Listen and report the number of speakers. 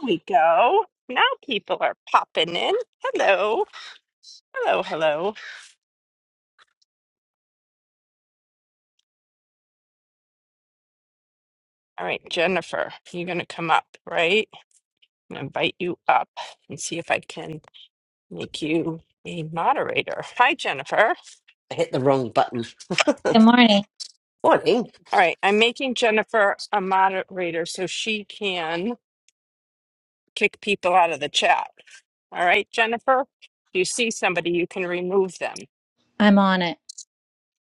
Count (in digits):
3